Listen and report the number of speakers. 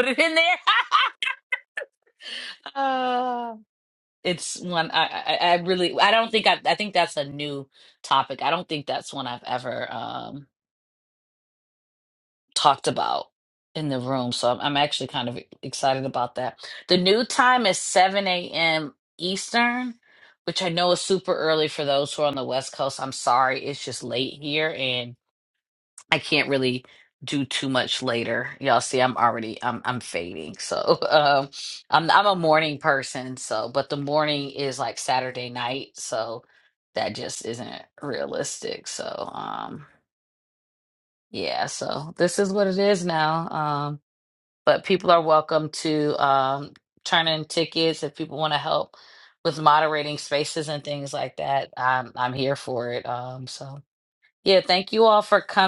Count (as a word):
one